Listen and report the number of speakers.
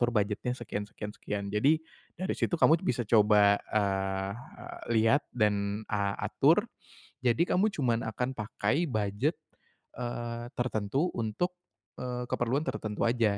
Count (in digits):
1